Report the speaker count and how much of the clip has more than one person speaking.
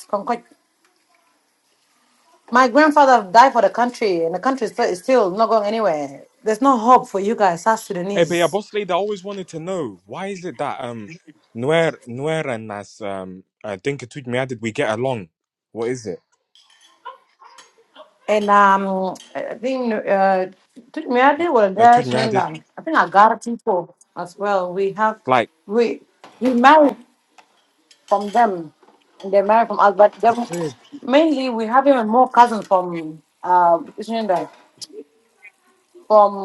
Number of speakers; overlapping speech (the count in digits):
2, about 3%